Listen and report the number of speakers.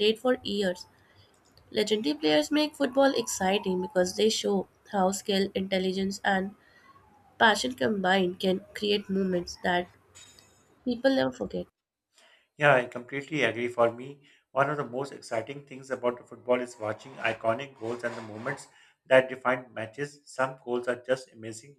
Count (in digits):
2